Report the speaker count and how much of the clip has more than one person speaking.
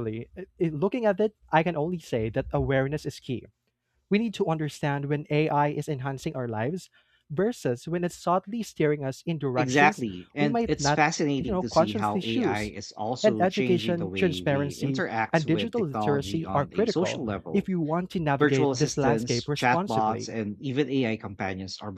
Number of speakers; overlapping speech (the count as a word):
two, about 37%